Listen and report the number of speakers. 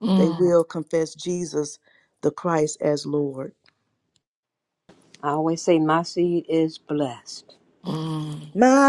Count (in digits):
3